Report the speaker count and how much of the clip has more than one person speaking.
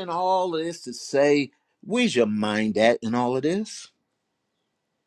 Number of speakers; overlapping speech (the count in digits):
1, no overlap